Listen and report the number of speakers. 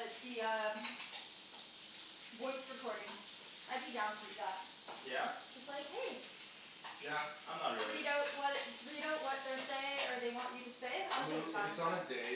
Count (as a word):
three